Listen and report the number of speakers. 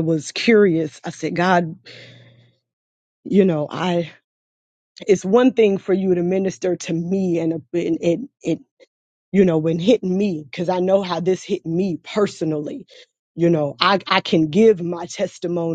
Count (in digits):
1